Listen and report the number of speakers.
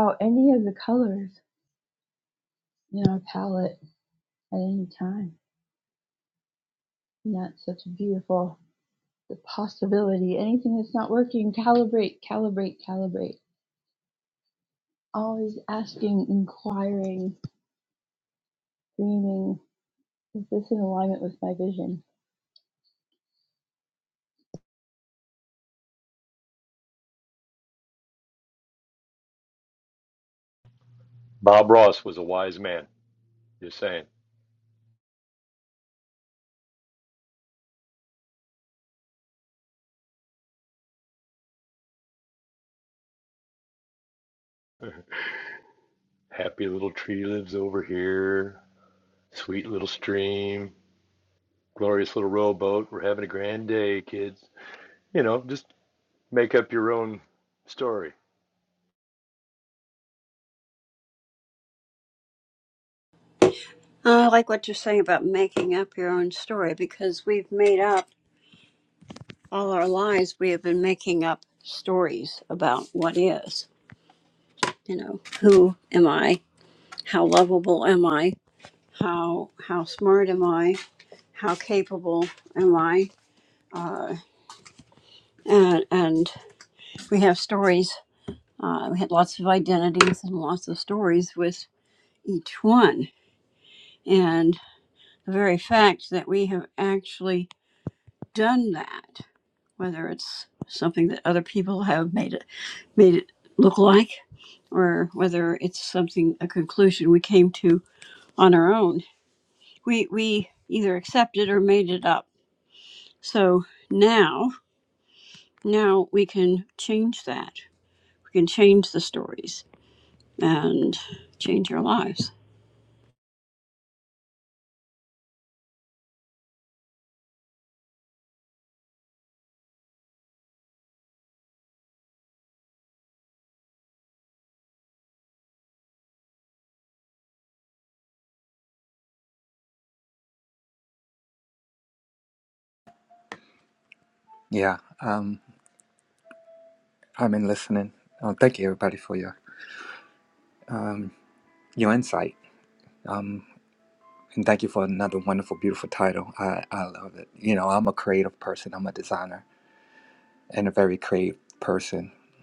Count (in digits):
4